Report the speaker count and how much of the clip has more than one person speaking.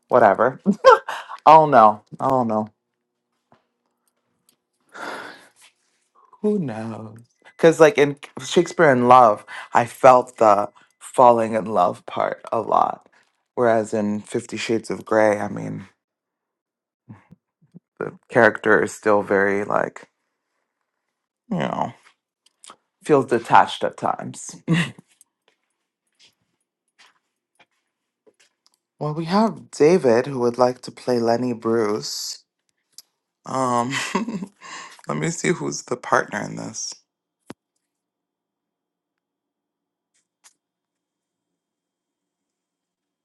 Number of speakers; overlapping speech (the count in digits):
1, no overlap